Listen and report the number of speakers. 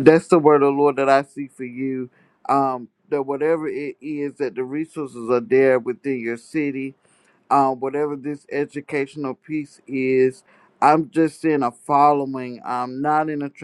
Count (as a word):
one